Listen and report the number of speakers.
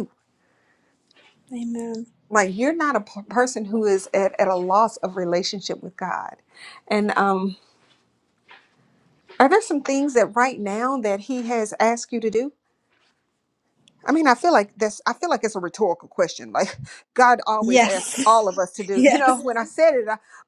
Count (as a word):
two